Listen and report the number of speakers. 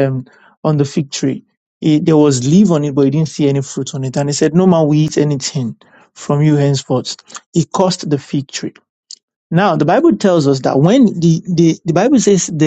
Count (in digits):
1